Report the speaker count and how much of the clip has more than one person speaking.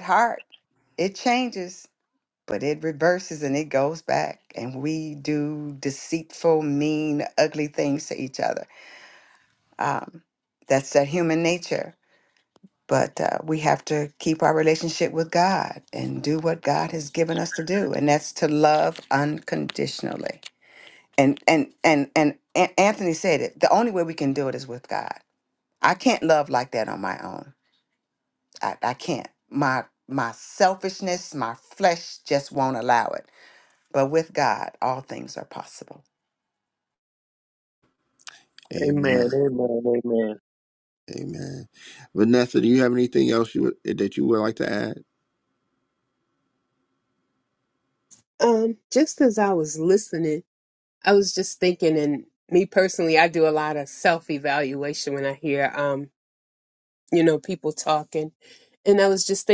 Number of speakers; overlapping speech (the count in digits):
4, about 1%